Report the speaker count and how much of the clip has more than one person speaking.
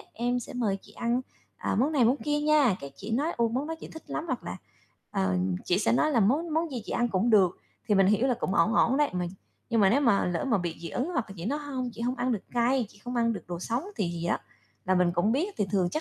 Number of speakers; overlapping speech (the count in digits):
1, no overlap